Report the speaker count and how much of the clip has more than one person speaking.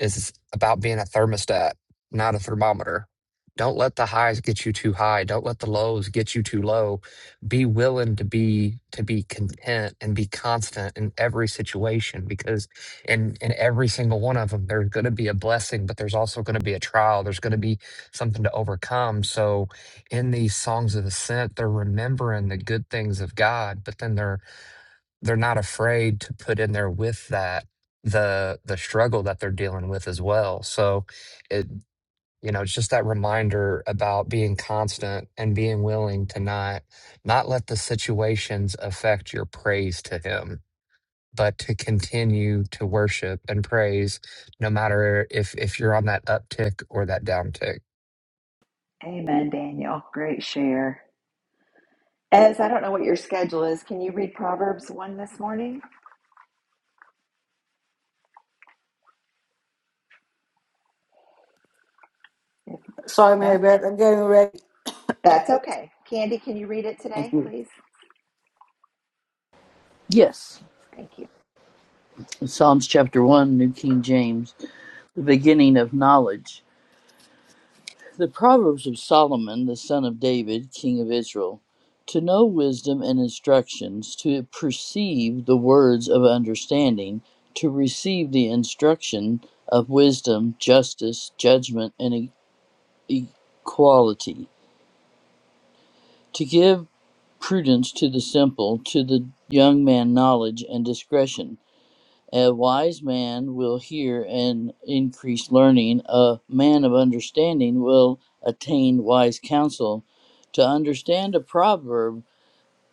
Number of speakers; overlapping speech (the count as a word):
four, under 1%